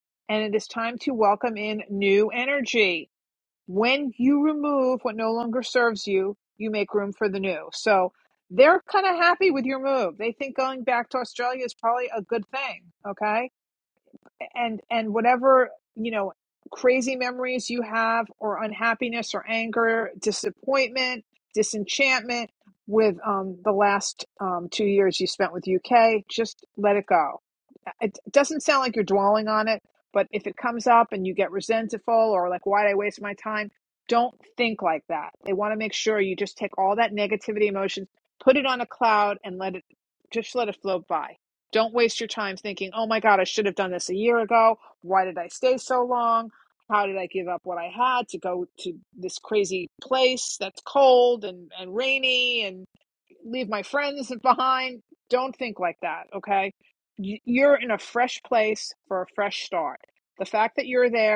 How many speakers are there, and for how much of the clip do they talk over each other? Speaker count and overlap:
1, no overlap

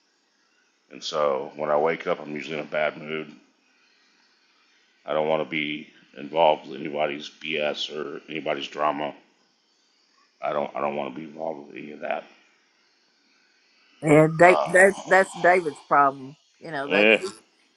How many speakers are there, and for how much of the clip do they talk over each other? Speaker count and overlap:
2, about 4%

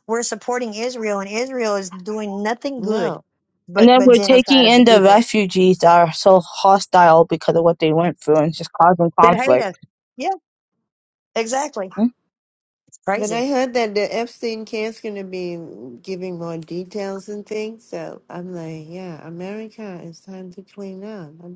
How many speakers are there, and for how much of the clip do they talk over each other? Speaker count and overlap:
3, about 11%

